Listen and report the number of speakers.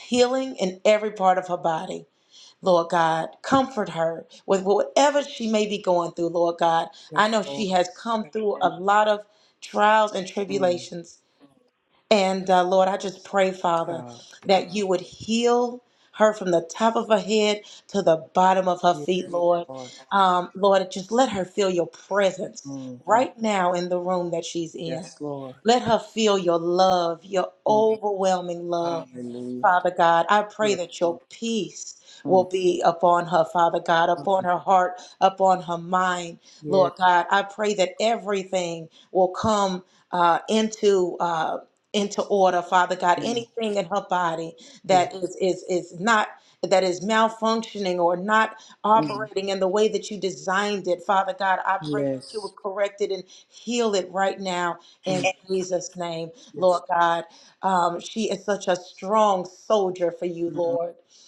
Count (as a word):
two